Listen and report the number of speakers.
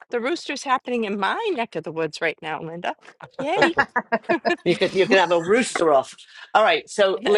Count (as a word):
two